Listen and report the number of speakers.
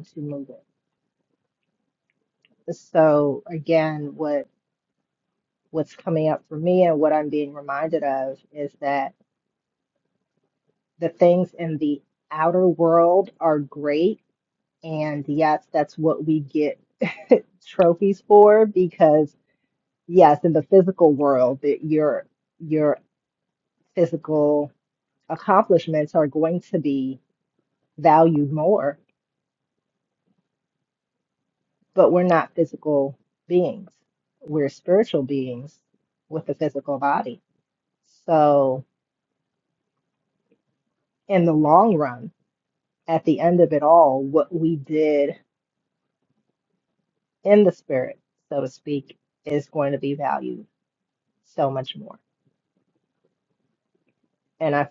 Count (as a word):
one